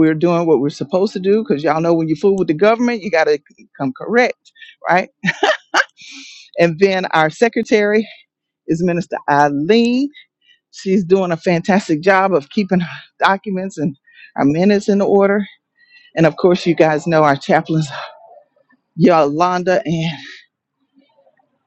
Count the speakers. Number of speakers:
one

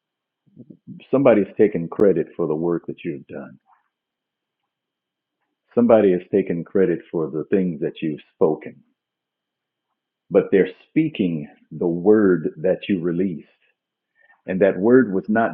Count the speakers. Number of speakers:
one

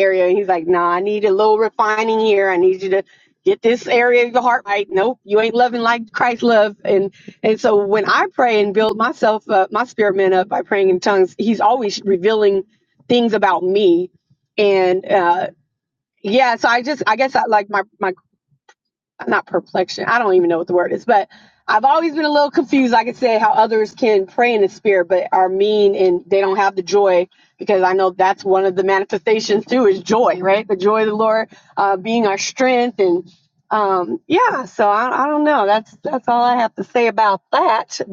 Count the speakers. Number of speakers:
one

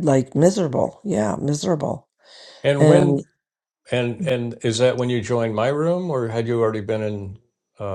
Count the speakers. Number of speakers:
two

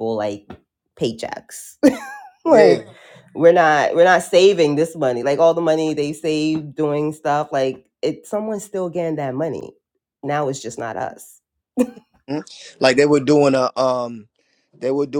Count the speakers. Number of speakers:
two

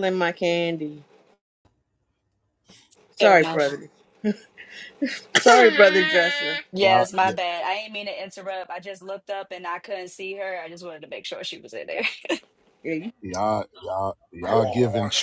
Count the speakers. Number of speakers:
three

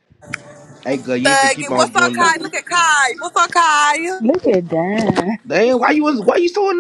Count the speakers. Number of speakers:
three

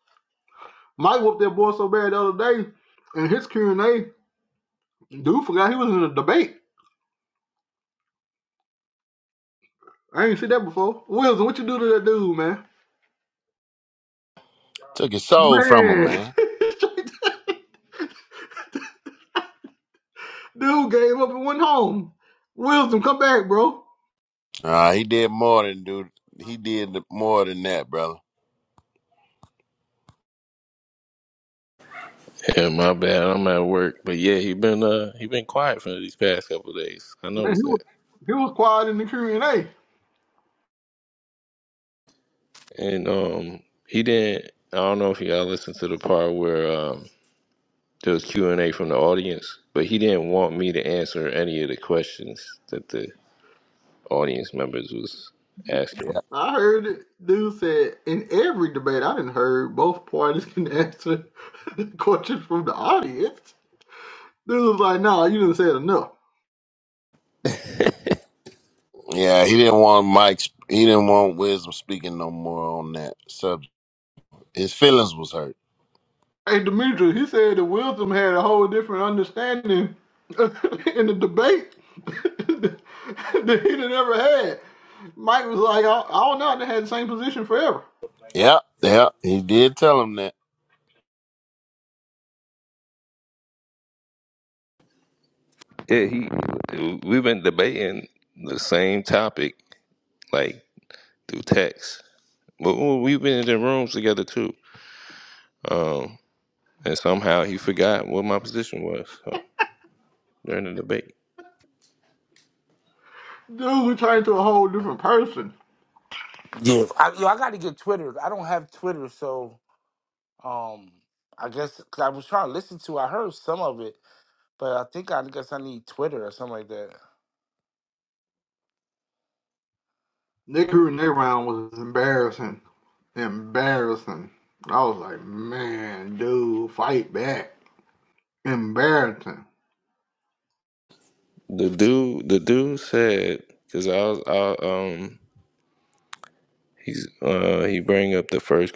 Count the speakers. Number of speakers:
four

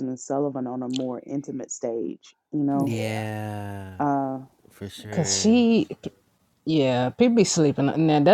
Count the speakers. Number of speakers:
three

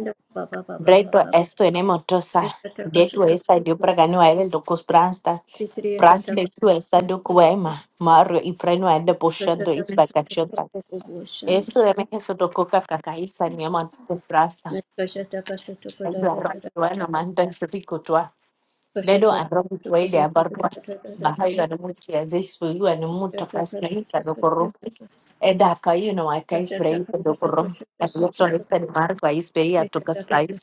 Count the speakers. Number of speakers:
two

